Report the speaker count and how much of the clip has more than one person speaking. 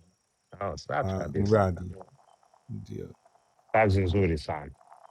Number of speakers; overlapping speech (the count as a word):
two, about 9%